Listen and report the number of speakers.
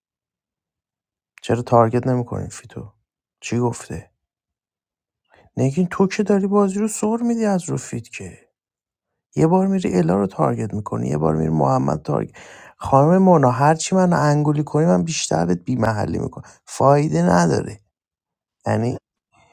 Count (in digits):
1